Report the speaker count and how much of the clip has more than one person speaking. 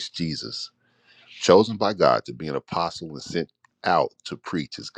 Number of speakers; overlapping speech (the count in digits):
1, no overlap